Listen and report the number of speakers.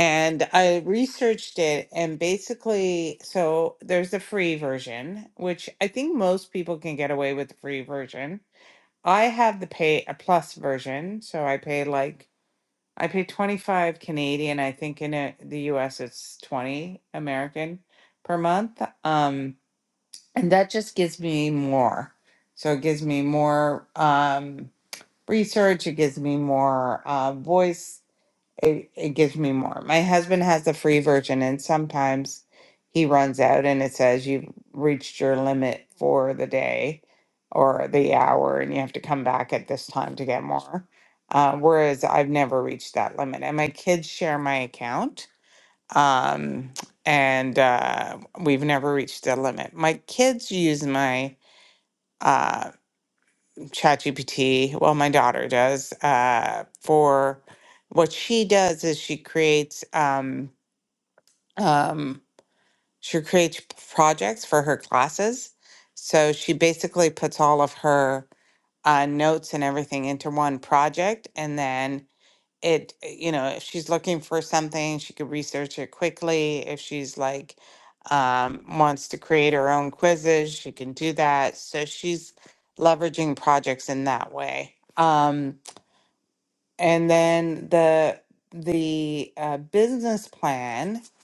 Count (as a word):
one